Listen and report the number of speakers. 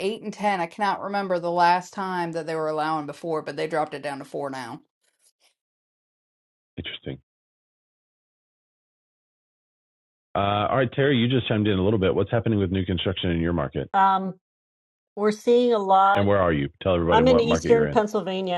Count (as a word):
three